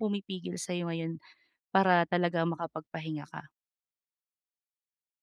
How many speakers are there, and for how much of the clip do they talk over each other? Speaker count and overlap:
1, no overlap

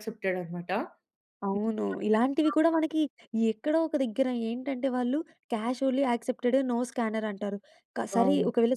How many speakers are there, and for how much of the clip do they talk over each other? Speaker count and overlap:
2, about 5%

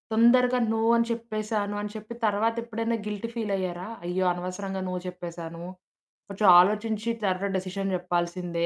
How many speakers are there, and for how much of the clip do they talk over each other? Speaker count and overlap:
1, no overlap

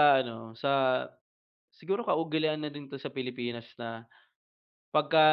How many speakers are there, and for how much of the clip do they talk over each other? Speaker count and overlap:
1, no overlap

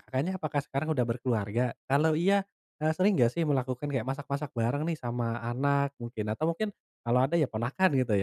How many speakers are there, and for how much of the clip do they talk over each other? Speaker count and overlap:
1, no overlap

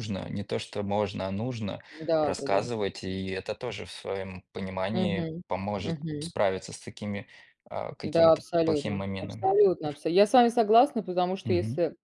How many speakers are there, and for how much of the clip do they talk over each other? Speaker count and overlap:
2, about 27%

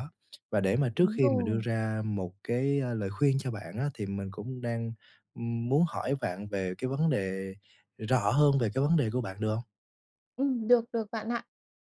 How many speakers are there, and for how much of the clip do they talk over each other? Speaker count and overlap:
2, about 5%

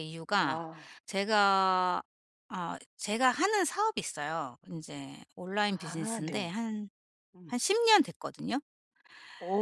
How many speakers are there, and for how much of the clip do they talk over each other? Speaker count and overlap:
2, about 10%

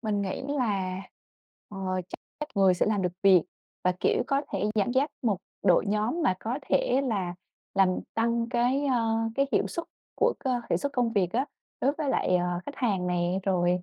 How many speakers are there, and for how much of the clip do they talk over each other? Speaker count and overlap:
1, no overlap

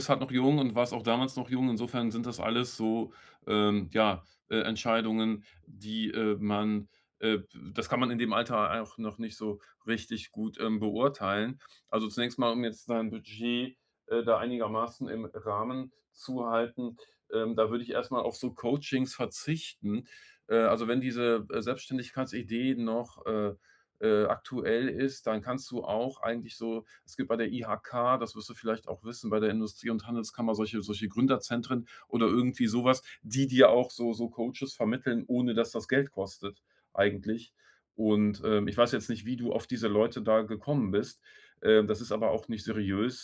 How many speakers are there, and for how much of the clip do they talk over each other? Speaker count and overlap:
1, no overlap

